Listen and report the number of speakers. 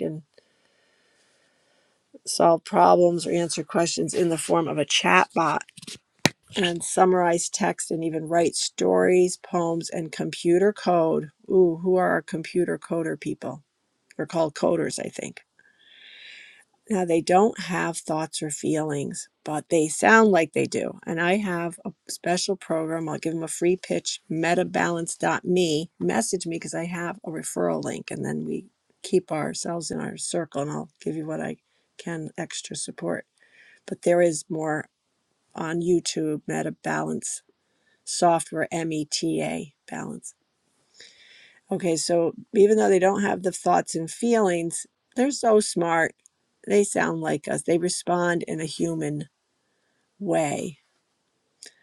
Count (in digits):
1